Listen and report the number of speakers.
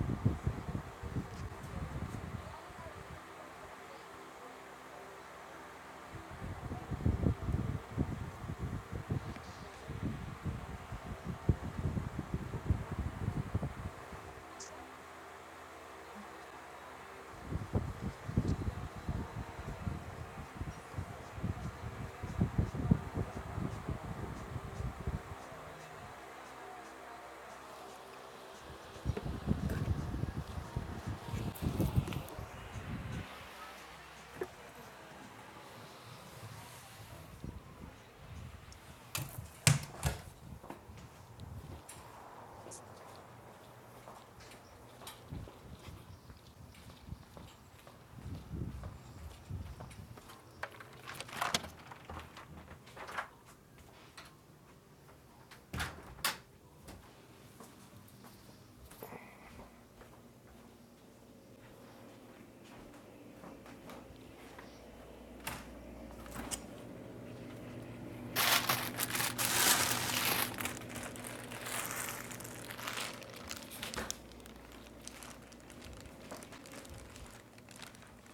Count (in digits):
0